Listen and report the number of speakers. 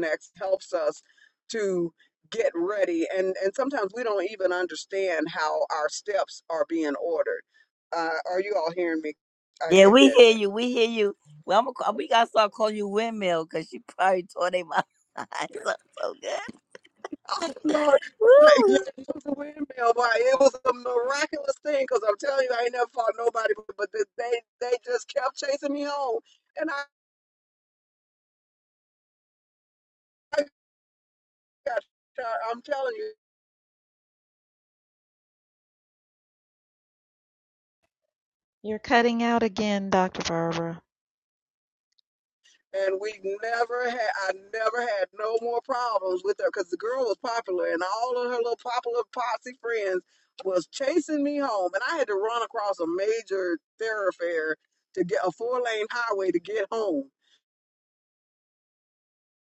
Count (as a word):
three